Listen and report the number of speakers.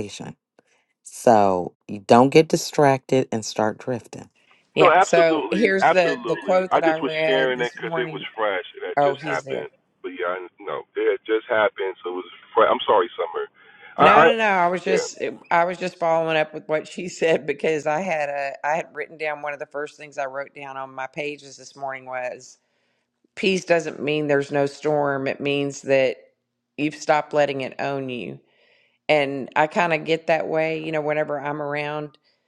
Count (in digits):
3